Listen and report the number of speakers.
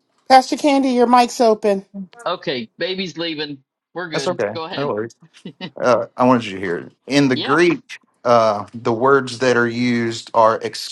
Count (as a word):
three